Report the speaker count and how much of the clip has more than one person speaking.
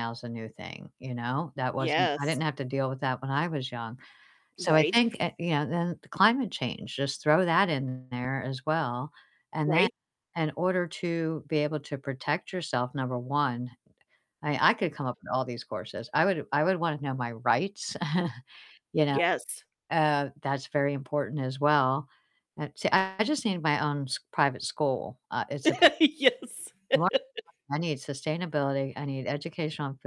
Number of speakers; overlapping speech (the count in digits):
2, about 4%